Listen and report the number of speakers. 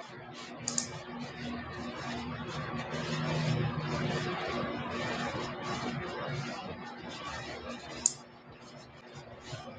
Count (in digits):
0